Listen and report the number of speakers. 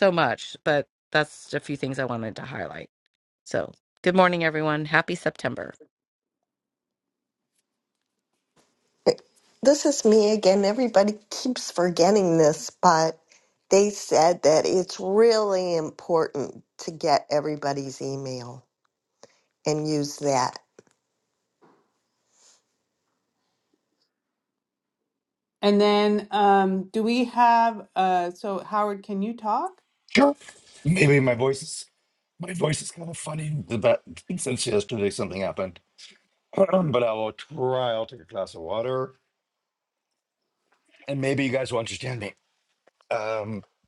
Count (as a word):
four